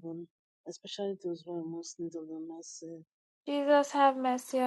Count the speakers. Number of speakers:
2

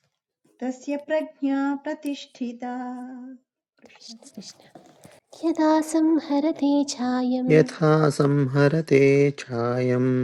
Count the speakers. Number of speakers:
3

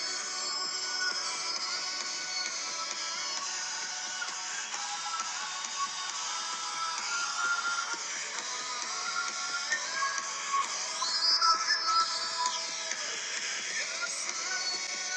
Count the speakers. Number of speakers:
0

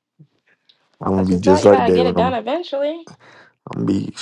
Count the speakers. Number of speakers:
2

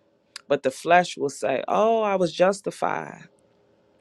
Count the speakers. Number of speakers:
1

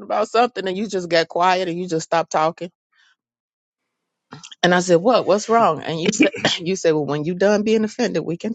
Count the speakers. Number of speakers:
1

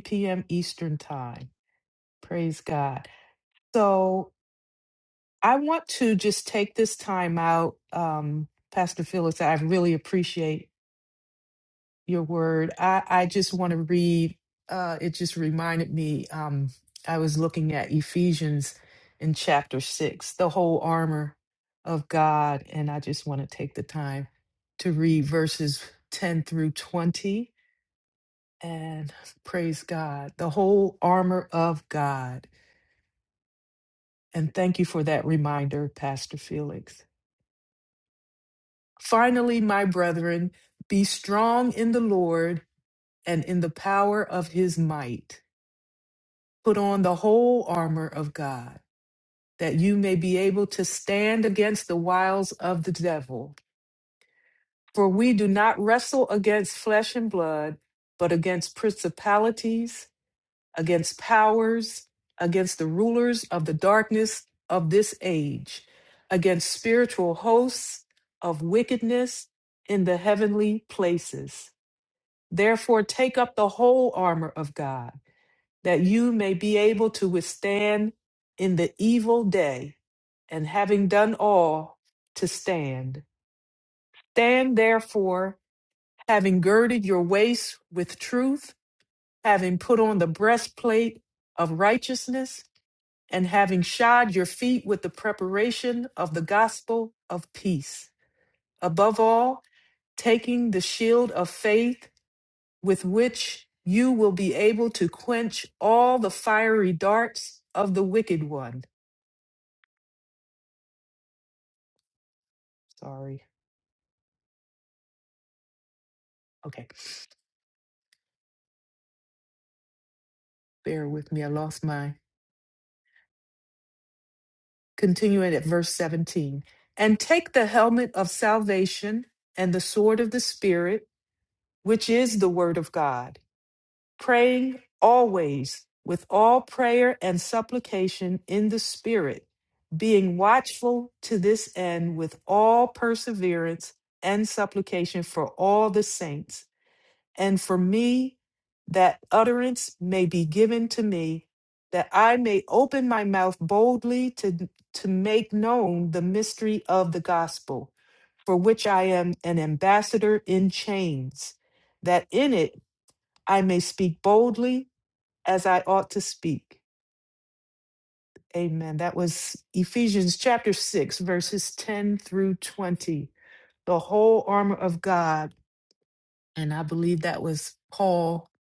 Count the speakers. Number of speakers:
1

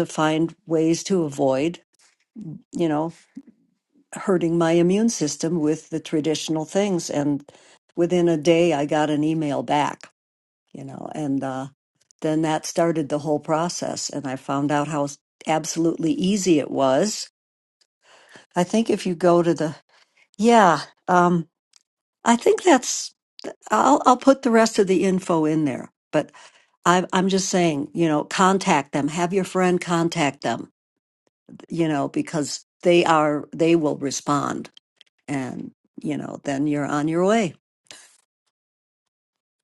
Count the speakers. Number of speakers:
1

